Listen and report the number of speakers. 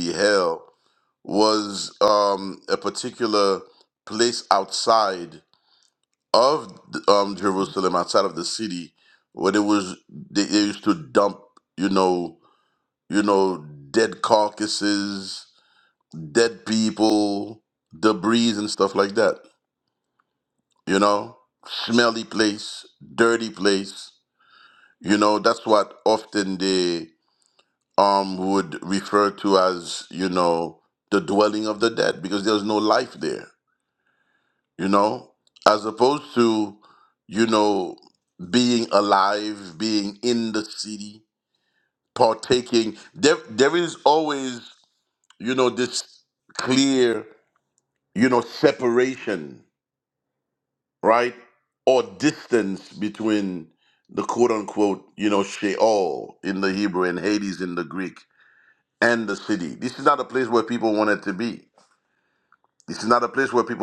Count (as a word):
one